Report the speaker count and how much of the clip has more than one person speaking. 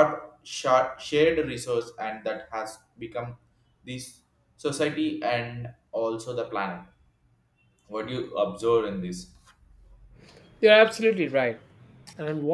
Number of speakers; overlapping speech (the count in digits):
2, no overlap